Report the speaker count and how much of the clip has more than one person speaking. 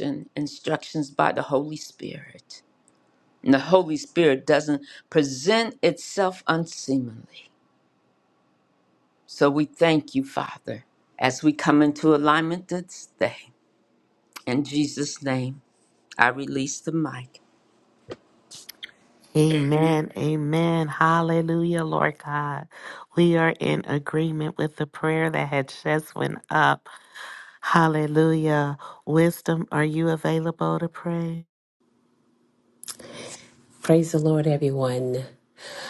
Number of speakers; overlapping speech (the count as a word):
three, no overlap